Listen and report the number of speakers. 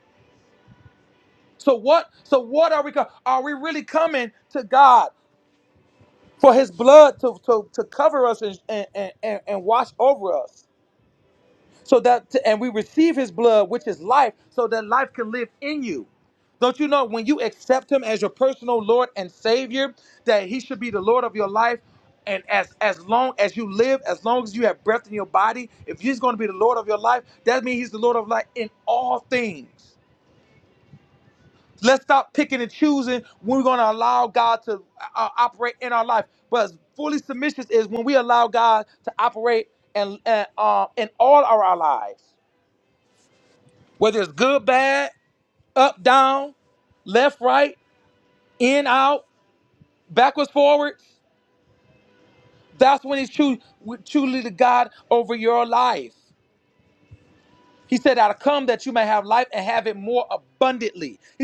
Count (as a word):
one